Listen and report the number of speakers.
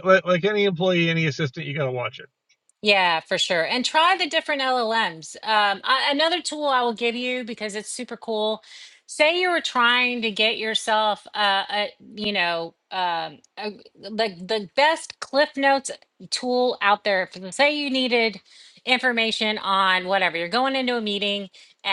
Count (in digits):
2